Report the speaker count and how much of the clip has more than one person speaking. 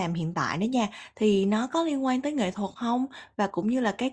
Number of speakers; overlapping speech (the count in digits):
1, no overlap